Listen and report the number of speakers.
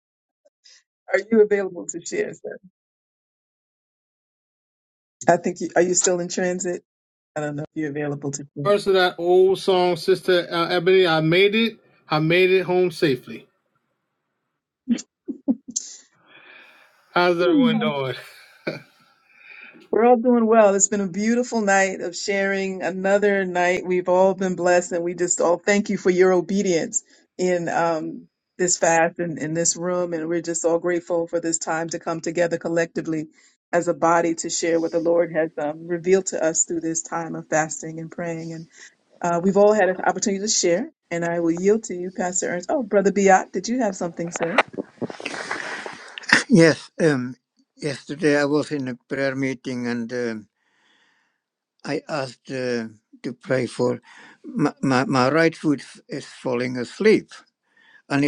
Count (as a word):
three